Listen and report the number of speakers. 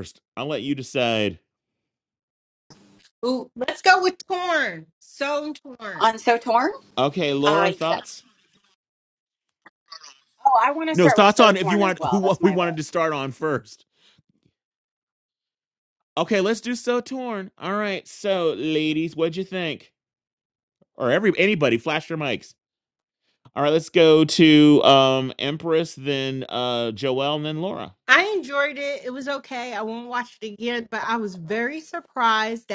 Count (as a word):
three